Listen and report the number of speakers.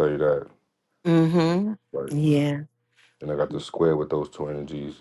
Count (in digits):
2